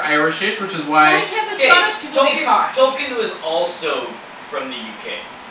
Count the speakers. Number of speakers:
3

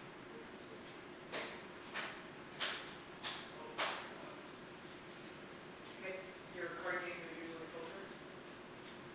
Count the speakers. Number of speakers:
1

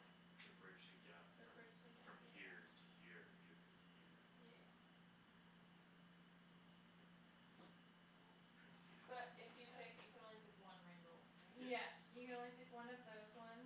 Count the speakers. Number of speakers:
3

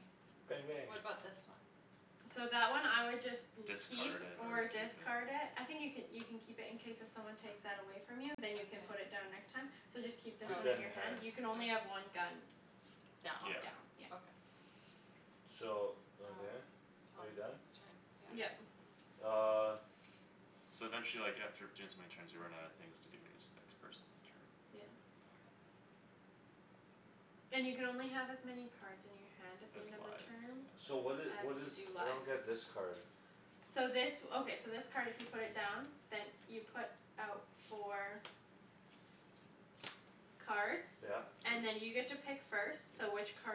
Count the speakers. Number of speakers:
4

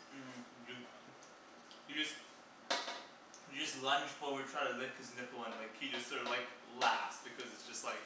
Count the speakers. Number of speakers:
1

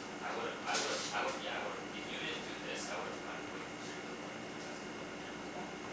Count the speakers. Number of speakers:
1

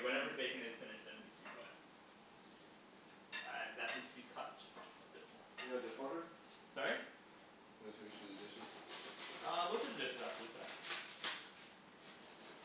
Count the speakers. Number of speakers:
2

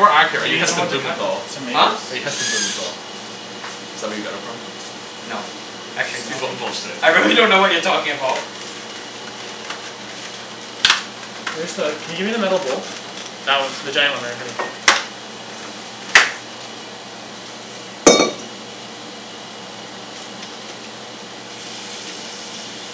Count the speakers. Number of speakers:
3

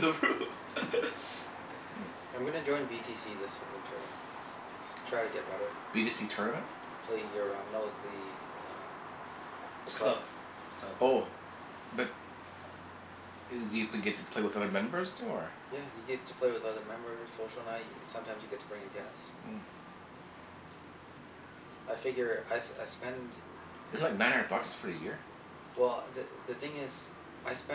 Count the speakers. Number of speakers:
3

